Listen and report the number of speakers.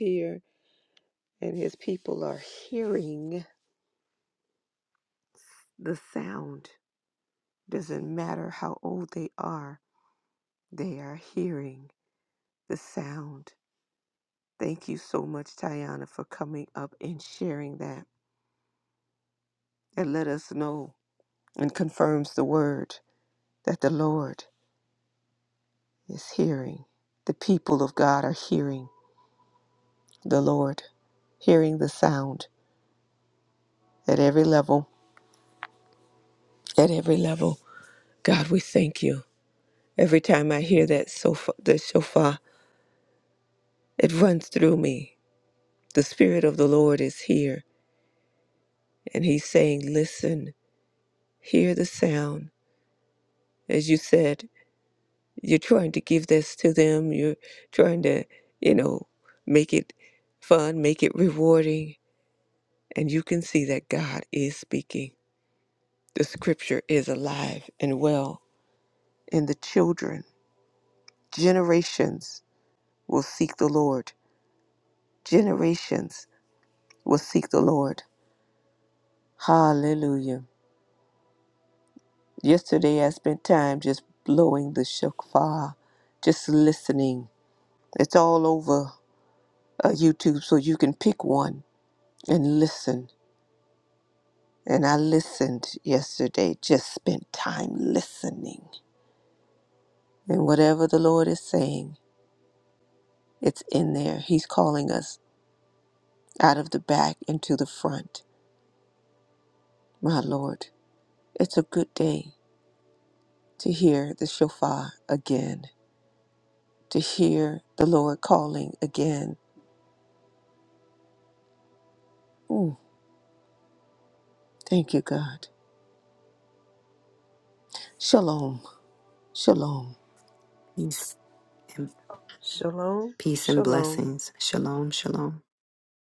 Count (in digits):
3